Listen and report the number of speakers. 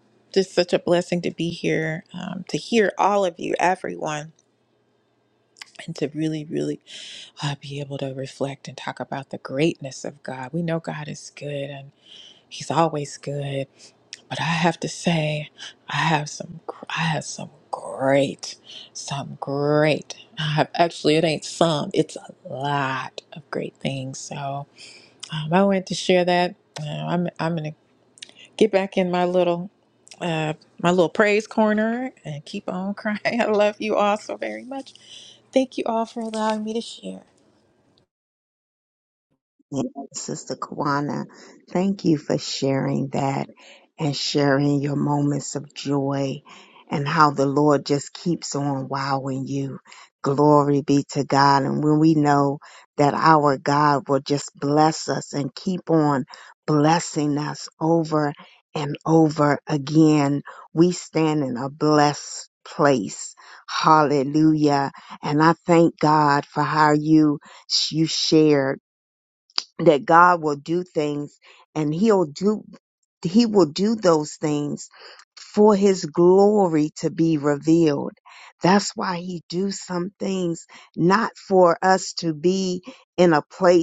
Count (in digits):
2